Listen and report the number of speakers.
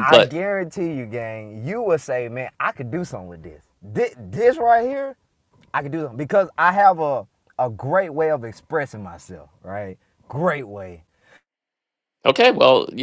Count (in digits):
2